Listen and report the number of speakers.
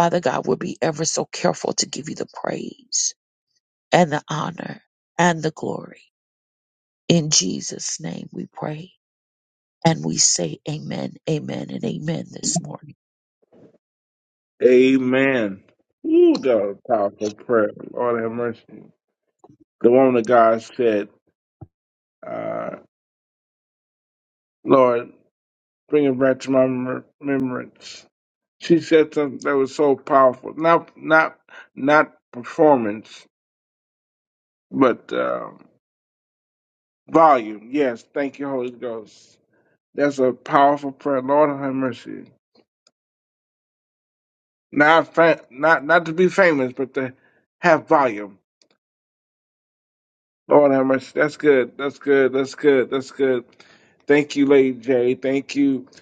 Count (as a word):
two